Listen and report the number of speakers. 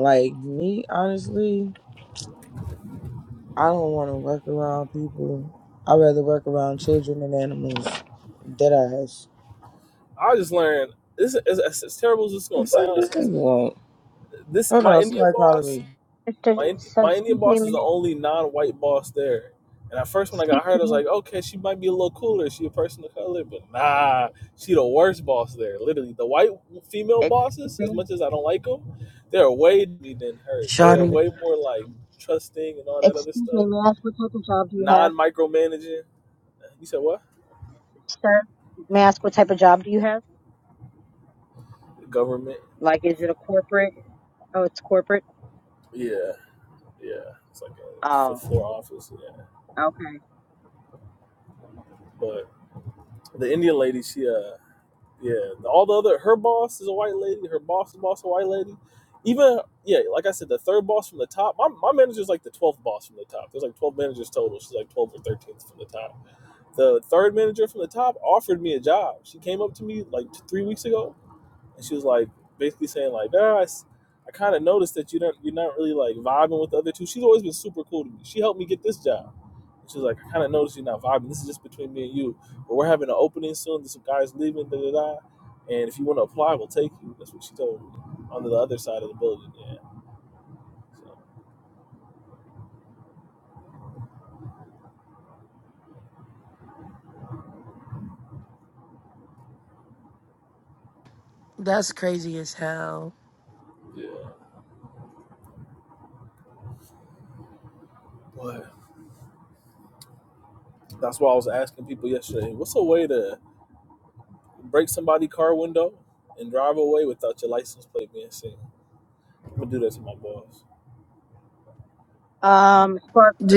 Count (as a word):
four